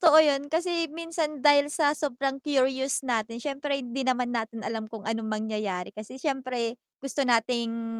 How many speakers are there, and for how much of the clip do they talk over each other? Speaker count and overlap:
1, no overlap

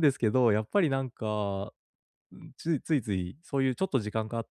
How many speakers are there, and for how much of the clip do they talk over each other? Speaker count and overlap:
1, no overlap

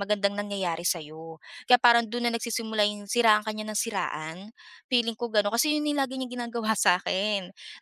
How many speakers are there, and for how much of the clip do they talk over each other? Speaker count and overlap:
1, no overlap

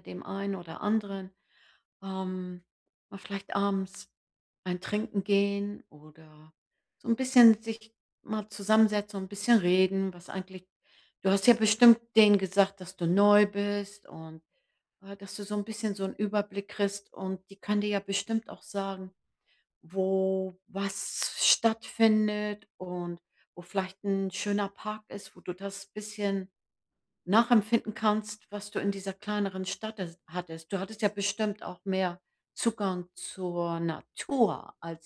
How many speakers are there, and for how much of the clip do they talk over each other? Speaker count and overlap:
1, no overlap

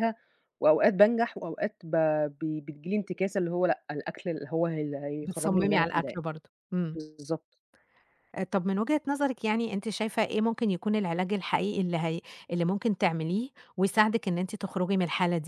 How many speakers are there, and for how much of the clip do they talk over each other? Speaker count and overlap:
2, about 6%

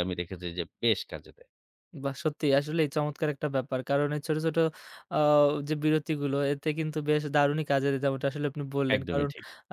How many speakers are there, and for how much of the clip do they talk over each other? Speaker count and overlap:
2, about 4%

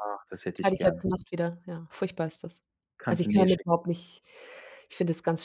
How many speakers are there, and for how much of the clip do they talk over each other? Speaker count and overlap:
2, about 18%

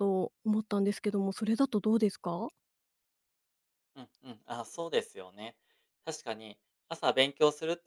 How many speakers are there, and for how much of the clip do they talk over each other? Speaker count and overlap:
2, no overlap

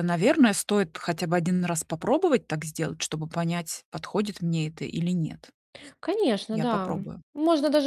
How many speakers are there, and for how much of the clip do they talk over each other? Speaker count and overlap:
2, about 5%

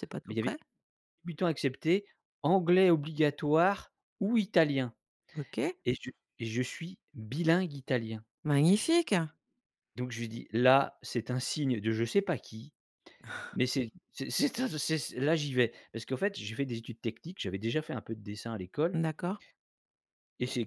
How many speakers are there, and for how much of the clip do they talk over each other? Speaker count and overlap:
2, about 1%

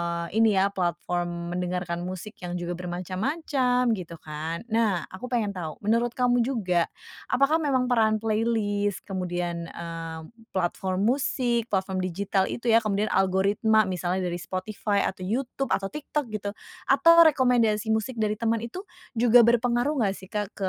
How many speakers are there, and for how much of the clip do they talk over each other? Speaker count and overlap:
1, no overlap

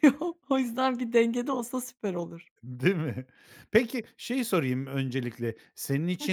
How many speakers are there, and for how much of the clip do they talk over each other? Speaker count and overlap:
2, about 2%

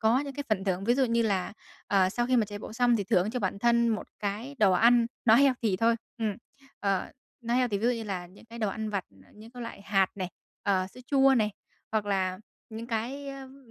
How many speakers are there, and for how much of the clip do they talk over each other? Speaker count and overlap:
1, no overlap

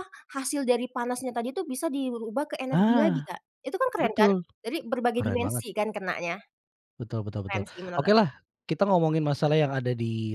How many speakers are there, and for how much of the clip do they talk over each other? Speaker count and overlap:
2, about 20%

